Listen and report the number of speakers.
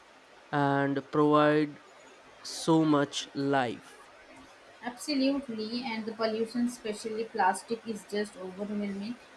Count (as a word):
two